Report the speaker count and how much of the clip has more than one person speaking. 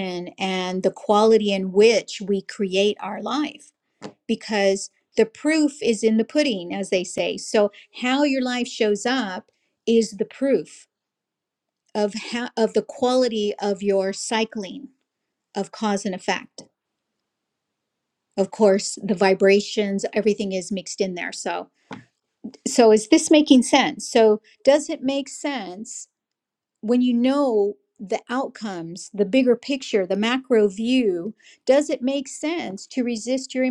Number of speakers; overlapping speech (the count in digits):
1, no overlap